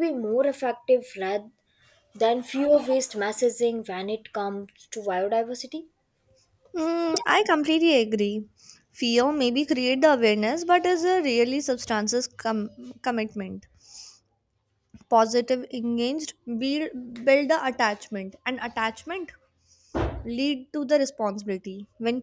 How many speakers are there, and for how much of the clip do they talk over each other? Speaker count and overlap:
2, no overlap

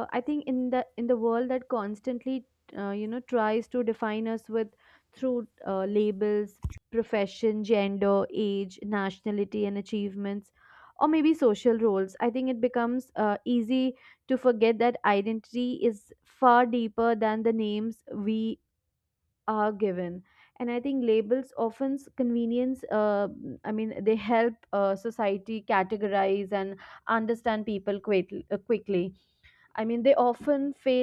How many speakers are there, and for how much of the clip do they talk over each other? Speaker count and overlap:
1, no overlap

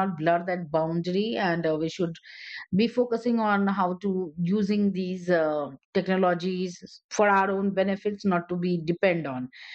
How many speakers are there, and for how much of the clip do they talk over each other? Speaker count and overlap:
1, no overlap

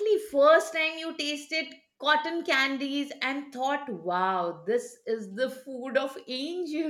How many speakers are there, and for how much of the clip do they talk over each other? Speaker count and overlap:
1, no overlap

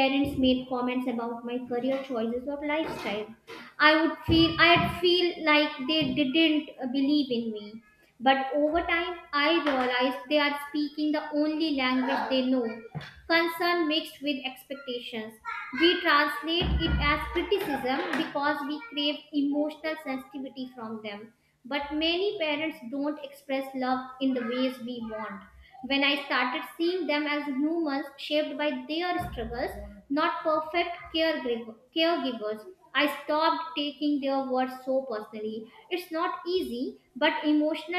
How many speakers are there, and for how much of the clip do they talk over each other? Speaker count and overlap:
1, no overlap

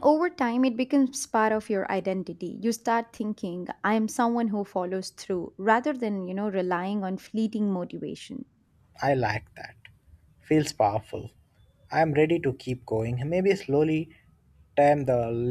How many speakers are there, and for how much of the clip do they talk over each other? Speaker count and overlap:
2, no overlap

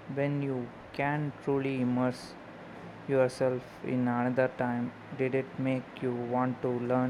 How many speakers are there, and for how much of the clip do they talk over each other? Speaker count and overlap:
1, no overlap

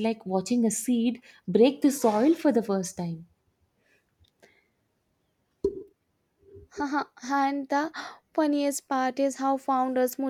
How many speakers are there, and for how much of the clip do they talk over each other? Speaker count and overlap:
2, no overlap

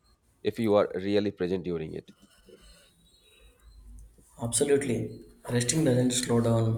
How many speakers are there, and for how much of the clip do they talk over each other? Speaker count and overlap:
2, no overlap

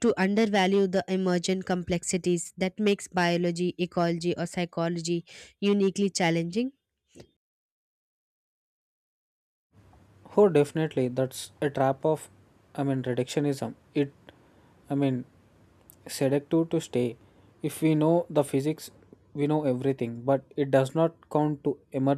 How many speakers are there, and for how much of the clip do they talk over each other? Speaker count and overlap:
2, no overlap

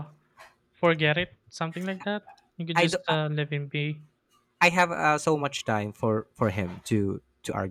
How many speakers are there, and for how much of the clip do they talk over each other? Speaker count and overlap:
2, about 5%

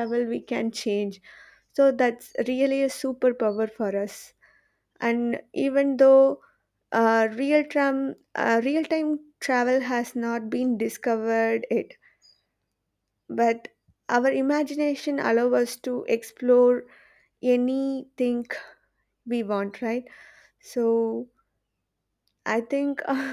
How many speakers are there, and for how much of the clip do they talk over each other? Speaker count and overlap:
1, no overlap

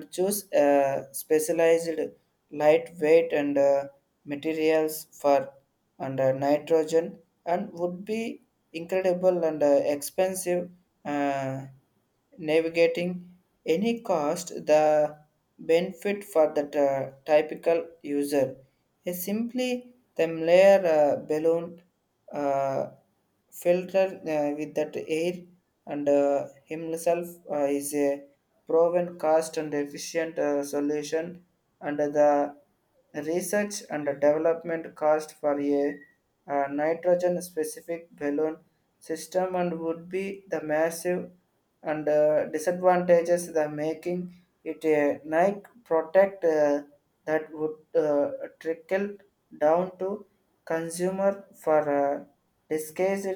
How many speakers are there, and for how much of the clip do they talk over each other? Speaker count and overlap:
1, no overlap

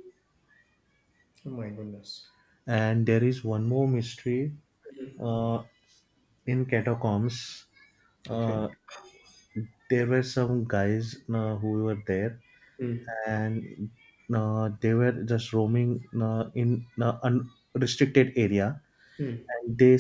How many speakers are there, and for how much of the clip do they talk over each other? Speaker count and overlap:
2, about 2%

